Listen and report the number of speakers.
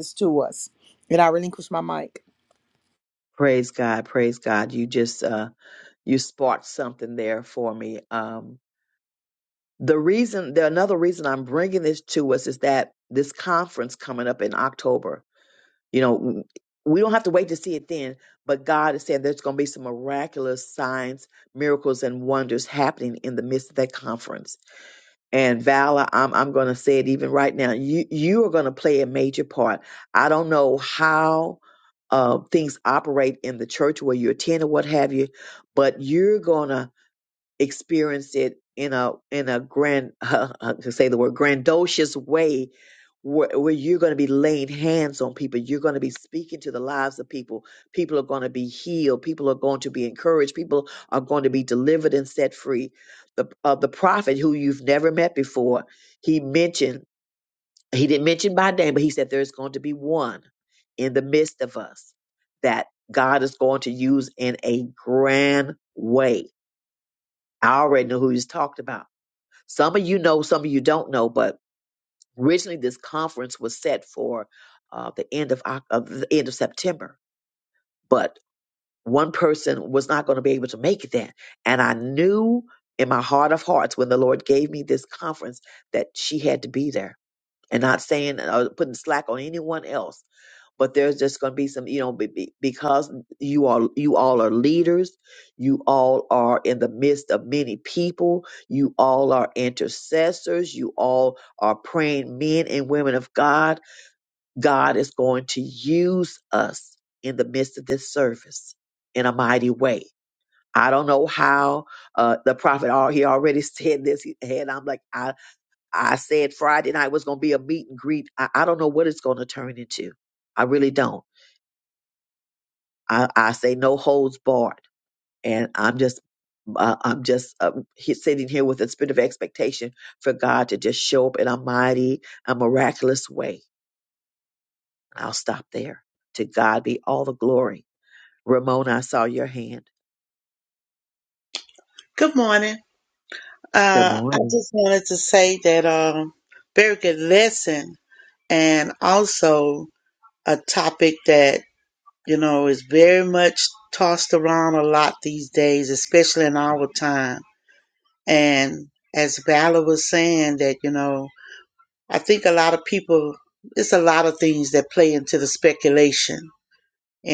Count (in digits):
3